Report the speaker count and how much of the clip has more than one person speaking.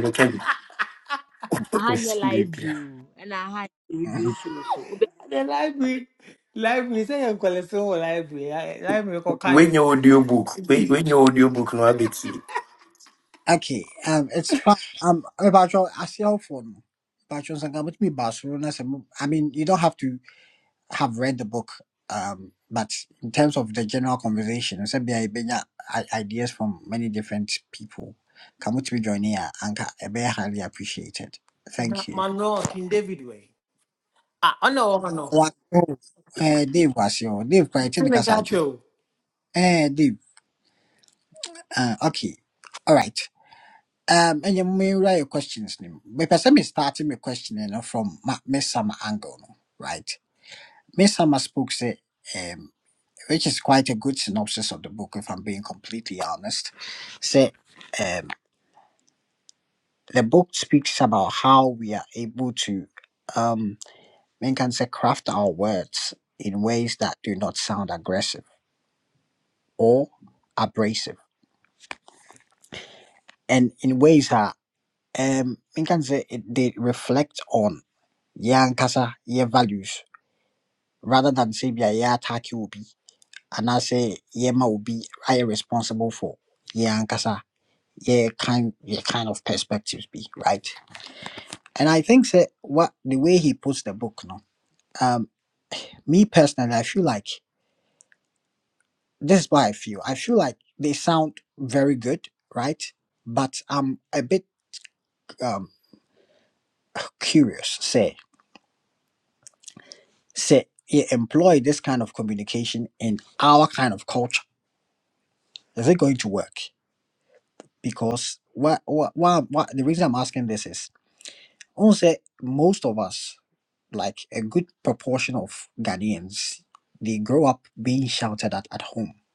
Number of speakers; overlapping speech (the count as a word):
four, about 2%